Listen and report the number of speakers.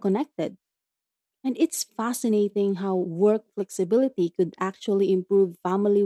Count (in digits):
1